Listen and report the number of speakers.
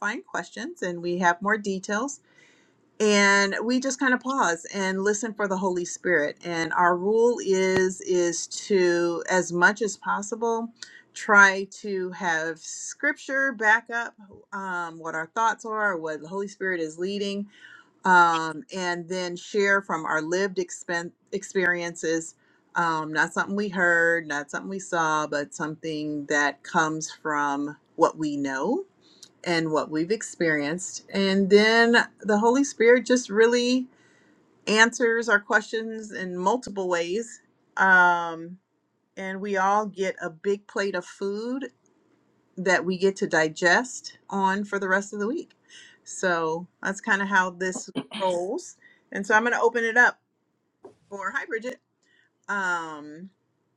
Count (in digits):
1